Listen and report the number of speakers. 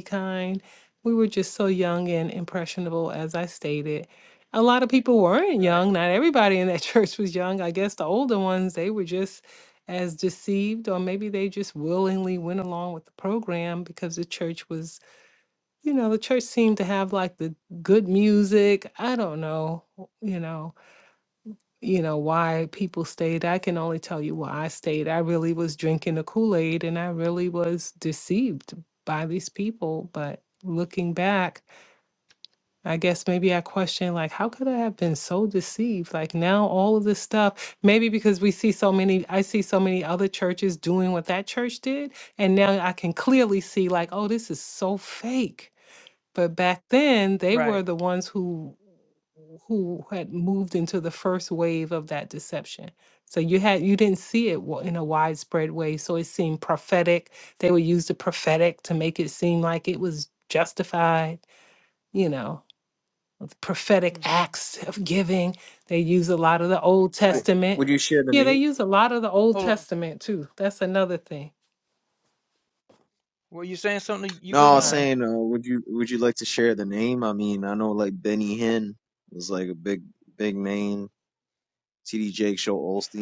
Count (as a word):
three